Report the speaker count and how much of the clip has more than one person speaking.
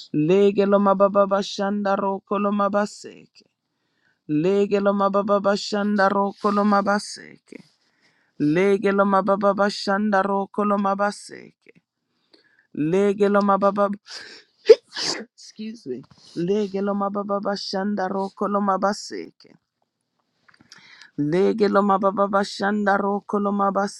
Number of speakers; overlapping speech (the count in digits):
1, no overlap